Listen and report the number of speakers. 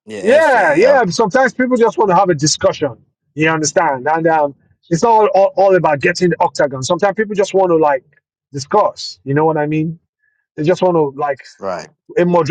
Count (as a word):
two